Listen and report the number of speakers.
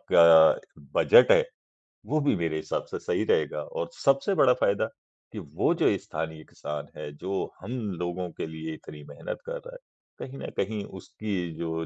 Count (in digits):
1